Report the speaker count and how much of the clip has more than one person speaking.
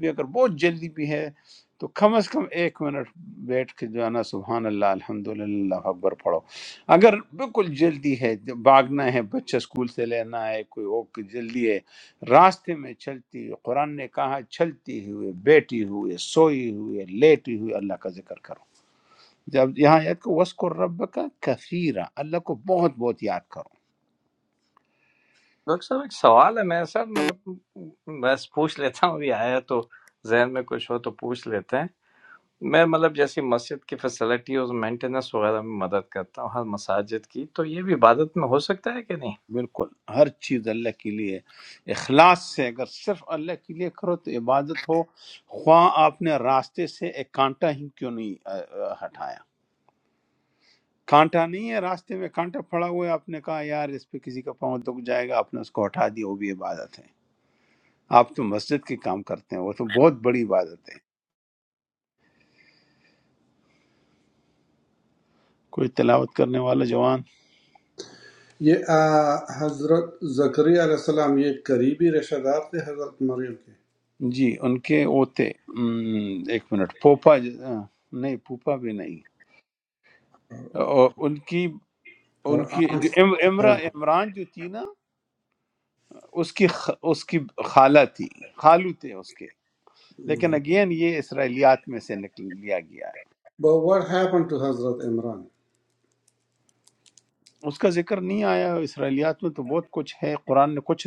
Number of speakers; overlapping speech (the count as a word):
three, about 1%